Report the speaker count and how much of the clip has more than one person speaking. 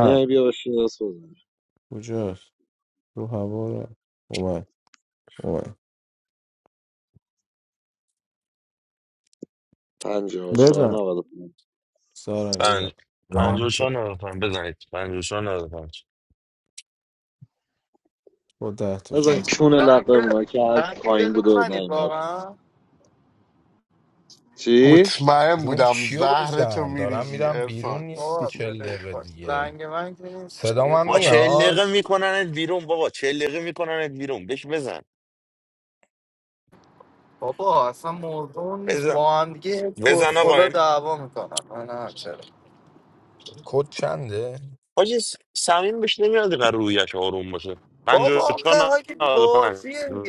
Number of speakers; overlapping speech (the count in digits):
6, about 22%